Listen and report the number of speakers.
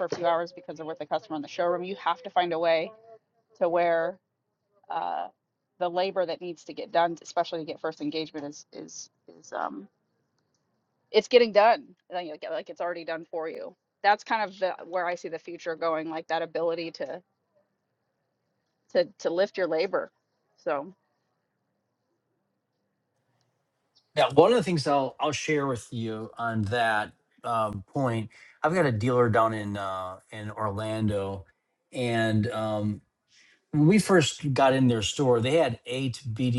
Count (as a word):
two